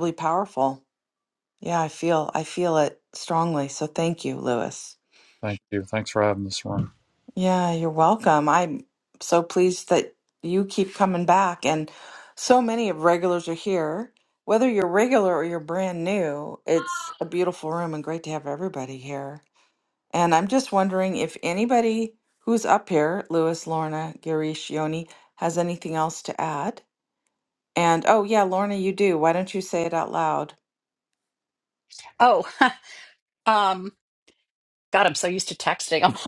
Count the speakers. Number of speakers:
3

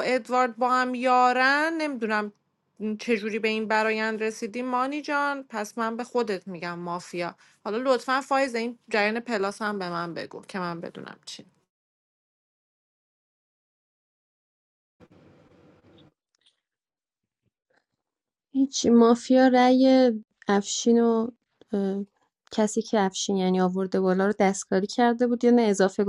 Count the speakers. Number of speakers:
2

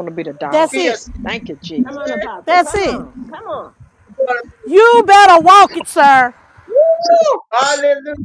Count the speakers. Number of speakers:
4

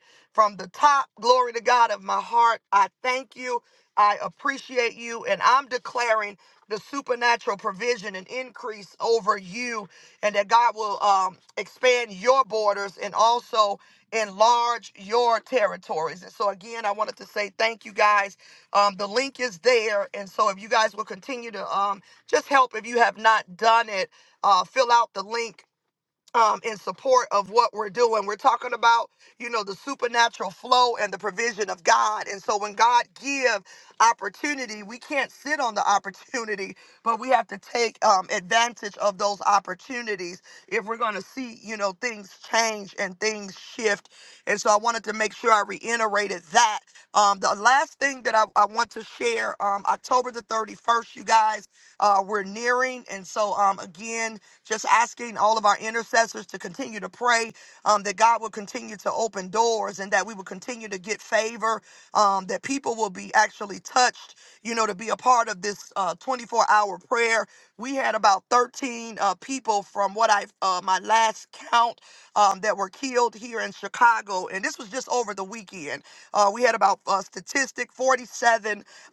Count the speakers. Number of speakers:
1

